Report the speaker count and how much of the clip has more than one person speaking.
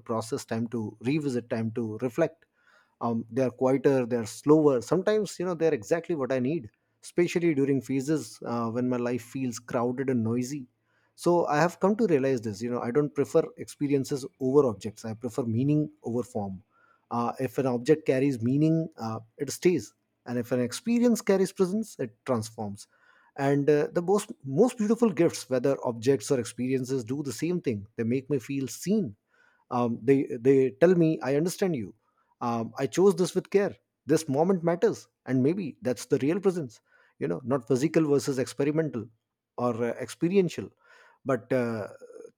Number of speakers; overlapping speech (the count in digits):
1, no overlap